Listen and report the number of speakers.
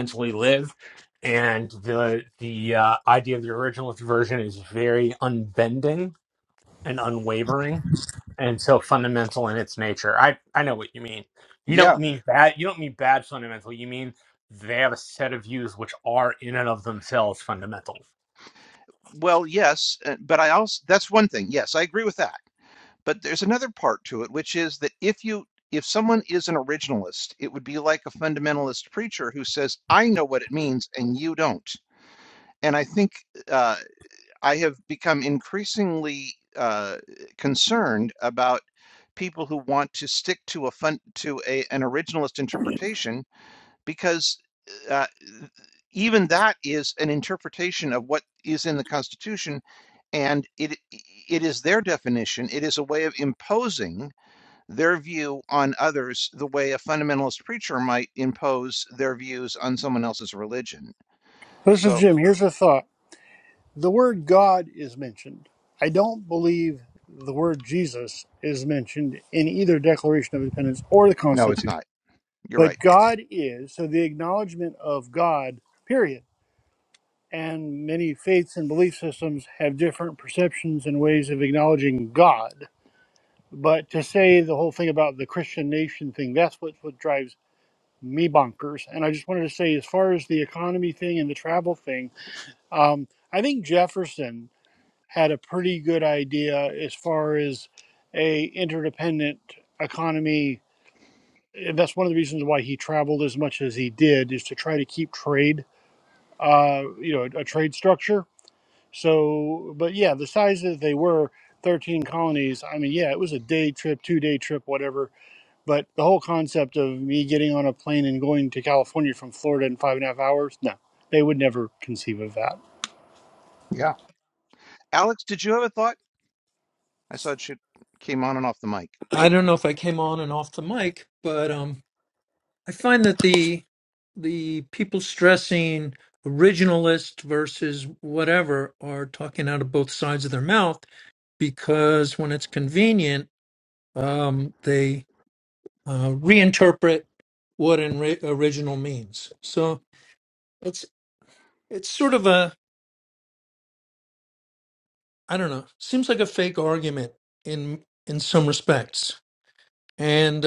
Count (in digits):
4